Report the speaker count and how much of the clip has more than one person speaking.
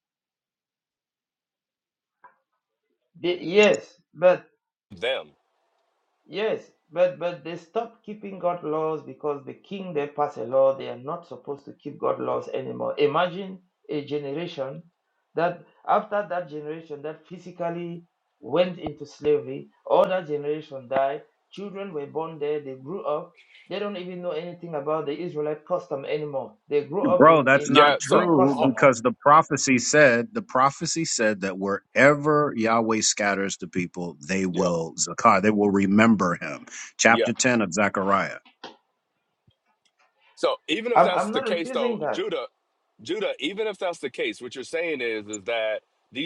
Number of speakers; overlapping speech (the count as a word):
three, about 7%